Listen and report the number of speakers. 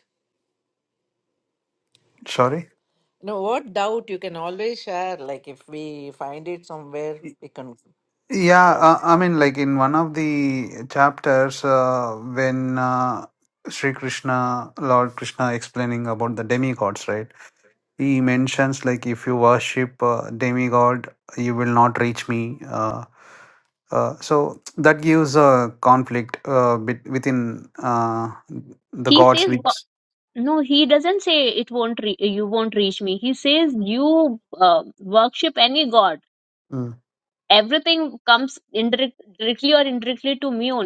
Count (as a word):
three